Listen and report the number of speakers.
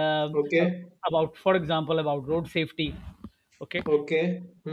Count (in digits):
2